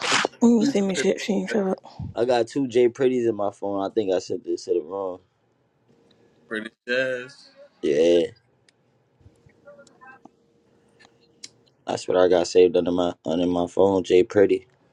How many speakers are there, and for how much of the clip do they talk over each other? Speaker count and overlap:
3, about 3%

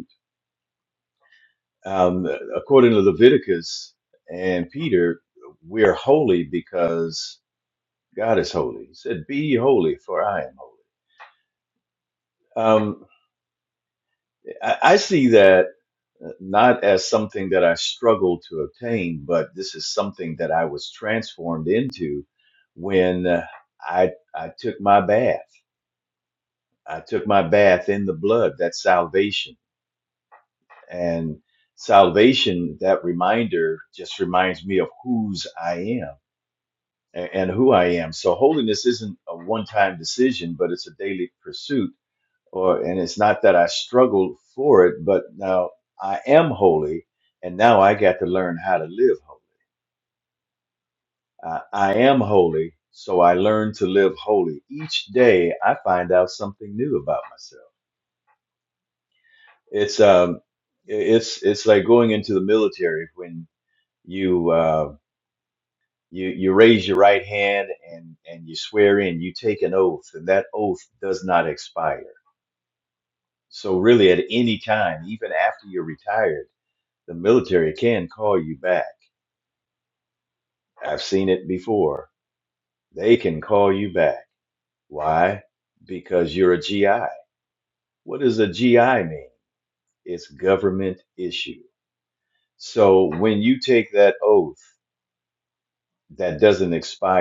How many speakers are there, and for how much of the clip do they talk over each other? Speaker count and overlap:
1, no overlap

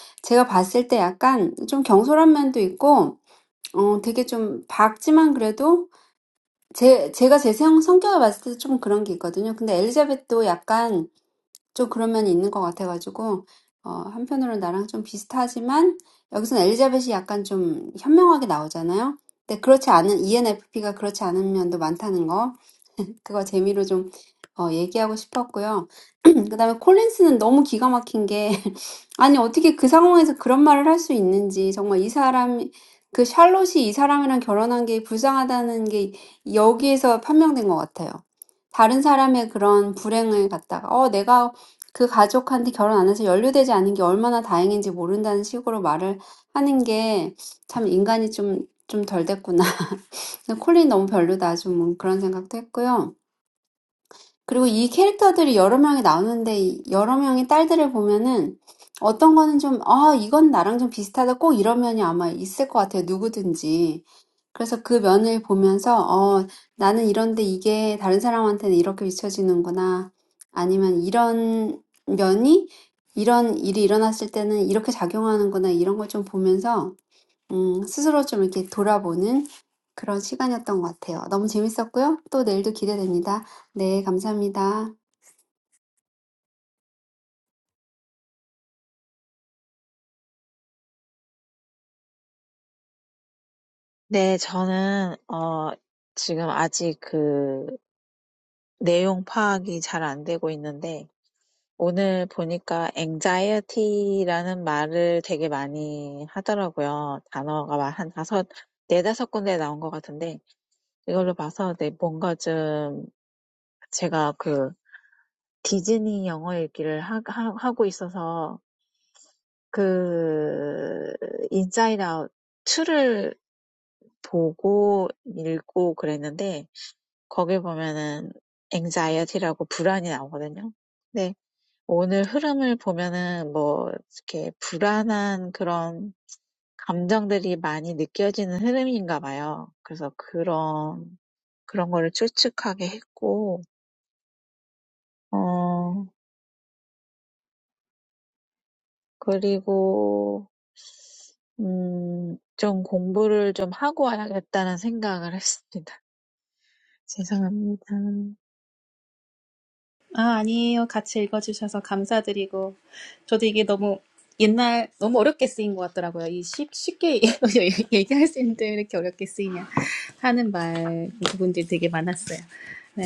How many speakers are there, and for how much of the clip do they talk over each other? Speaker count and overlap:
3, no overlap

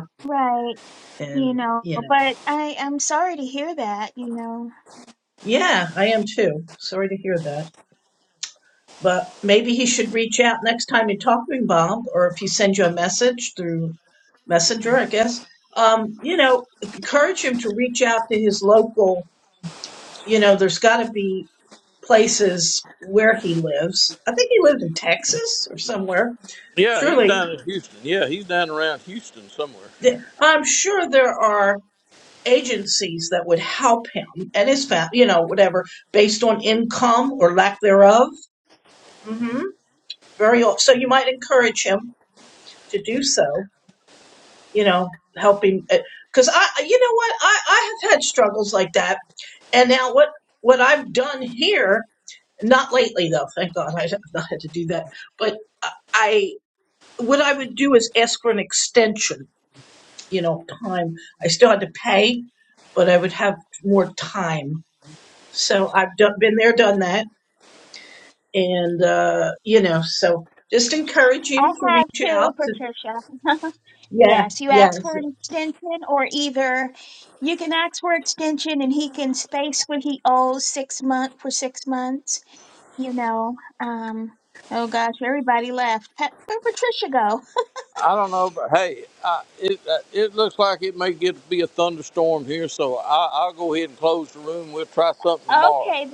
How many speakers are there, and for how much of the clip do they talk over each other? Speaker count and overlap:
3, about 3%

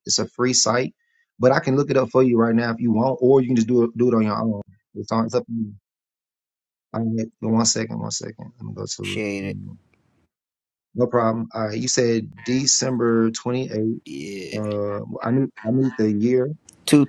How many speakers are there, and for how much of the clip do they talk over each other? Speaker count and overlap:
2, about 2%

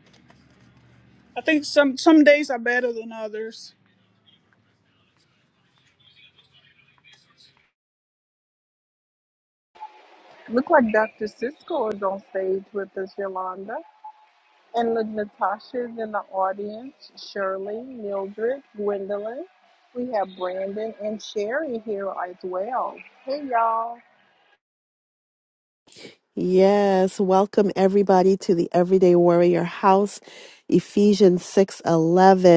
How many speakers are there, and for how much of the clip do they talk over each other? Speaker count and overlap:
3, no overlap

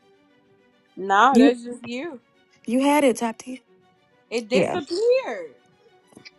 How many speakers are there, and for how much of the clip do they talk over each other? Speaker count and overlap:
2, about 7%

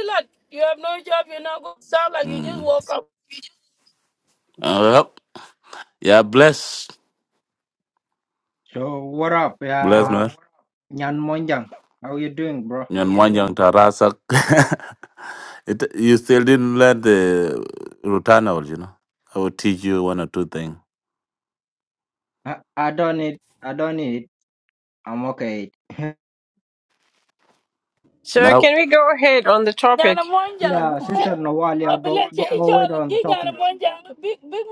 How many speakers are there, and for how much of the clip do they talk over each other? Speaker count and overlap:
4, about 10%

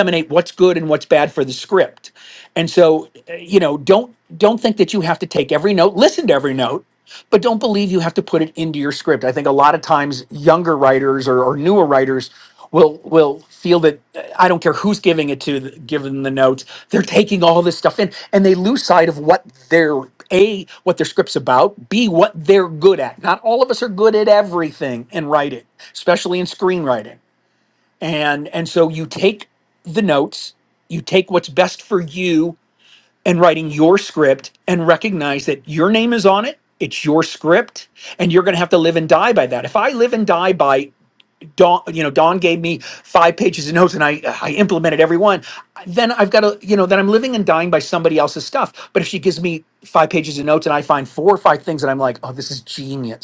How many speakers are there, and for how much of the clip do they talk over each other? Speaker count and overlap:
1, no overlap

